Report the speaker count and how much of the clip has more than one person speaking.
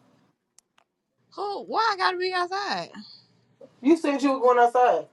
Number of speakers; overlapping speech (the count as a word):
two, no overlap